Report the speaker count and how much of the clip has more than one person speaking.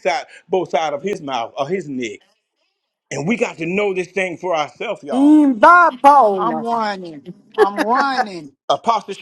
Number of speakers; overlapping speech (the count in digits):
3, about 5%